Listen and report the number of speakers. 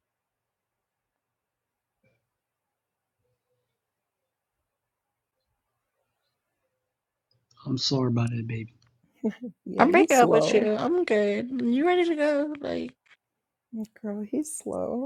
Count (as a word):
three